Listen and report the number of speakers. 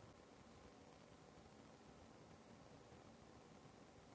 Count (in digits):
0